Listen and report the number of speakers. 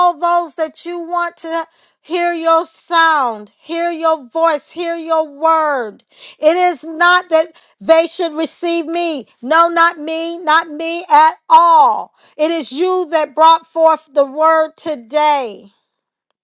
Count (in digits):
1